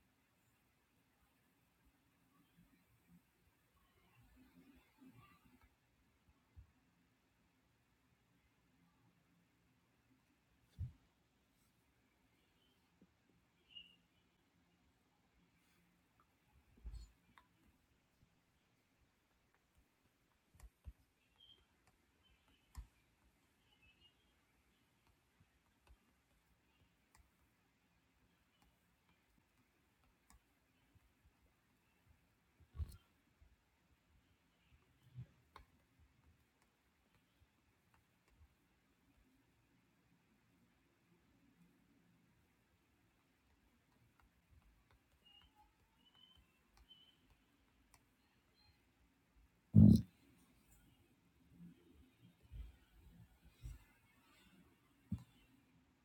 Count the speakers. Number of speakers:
zero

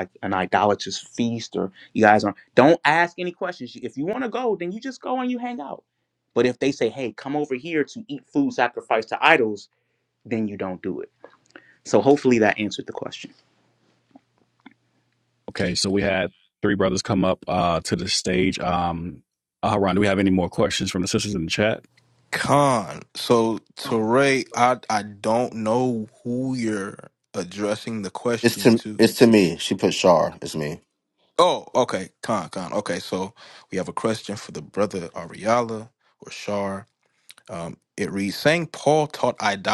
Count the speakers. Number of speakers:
four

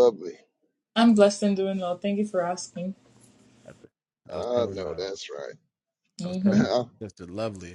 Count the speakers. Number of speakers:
three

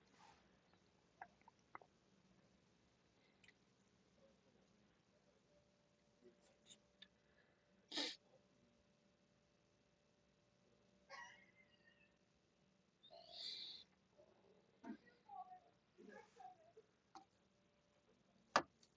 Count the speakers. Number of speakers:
zero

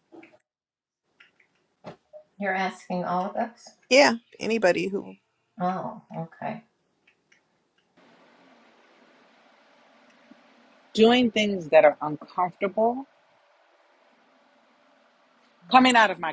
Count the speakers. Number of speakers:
three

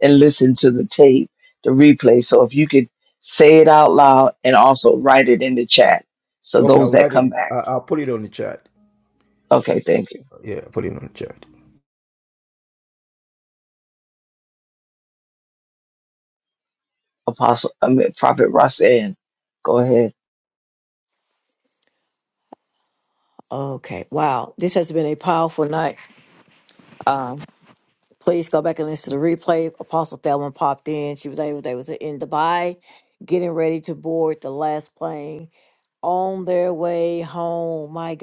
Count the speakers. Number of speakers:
three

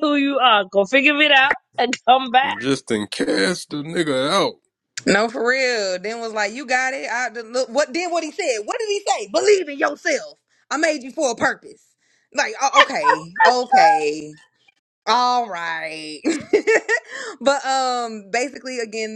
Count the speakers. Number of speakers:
three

